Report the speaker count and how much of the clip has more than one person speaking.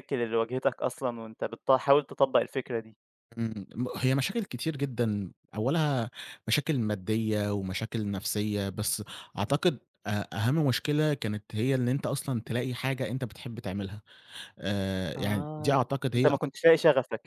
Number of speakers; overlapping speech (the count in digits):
2, about 5%